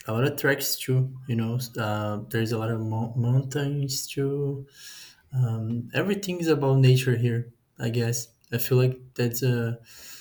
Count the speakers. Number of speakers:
1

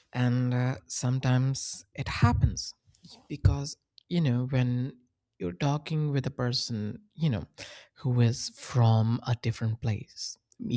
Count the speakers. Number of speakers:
1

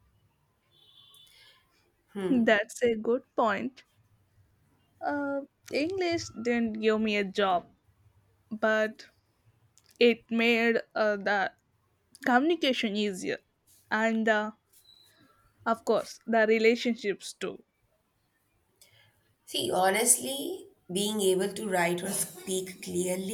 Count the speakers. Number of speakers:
2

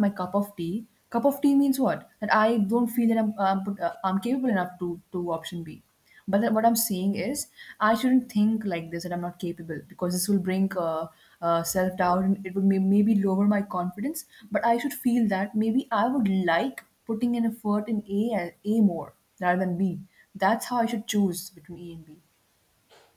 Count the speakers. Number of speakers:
1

